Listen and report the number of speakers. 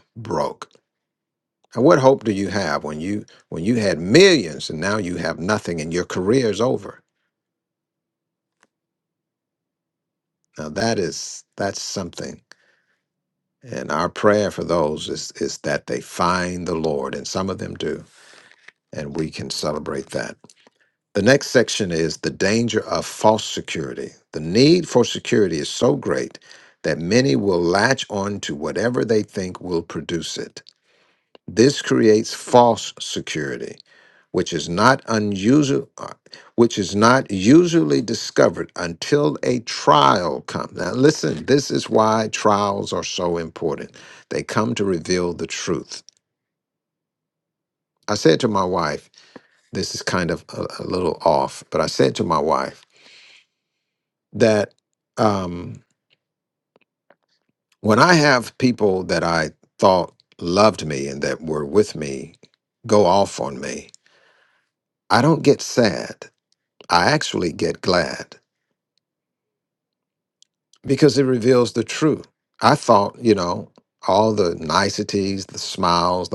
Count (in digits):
1